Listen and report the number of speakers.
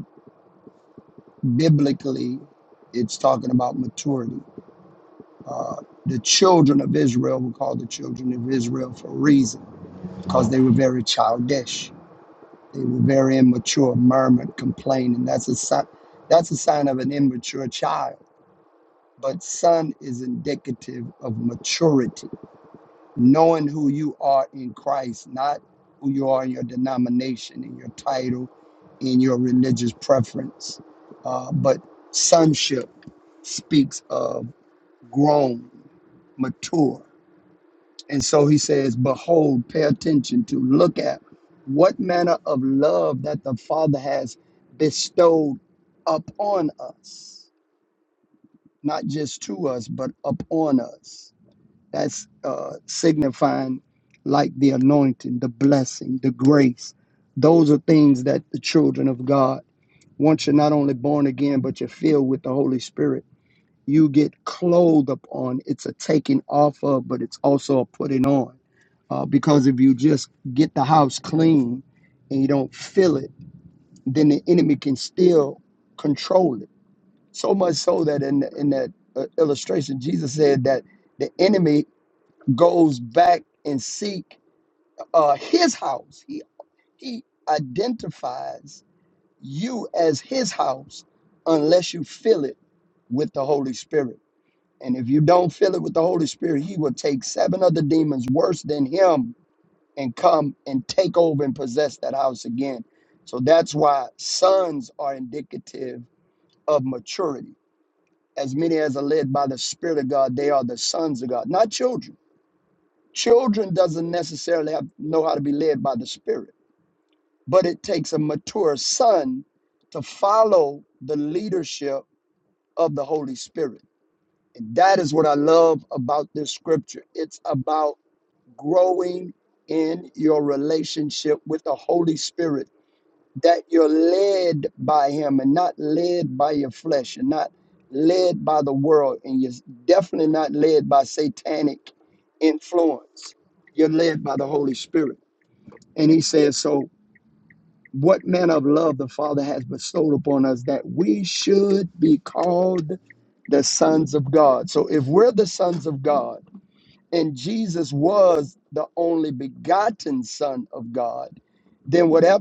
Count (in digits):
1